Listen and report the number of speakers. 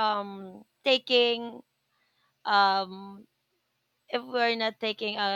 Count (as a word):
one